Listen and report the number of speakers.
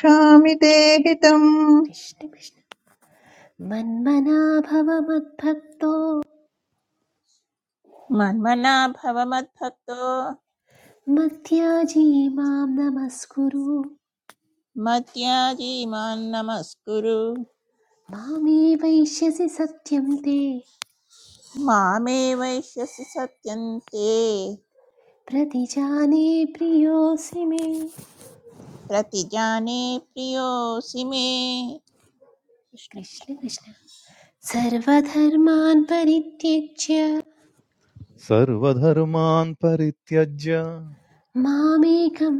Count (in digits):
4